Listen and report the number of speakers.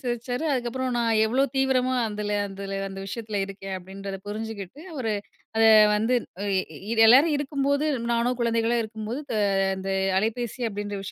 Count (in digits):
1